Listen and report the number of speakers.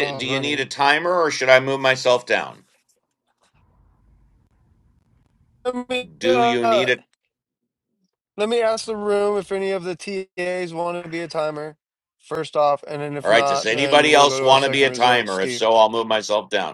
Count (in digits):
2